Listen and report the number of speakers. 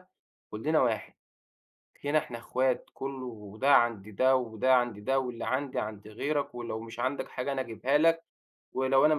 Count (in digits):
1